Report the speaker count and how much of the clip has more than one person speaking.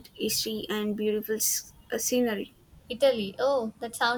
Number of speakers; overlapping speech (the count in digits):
2, no overlap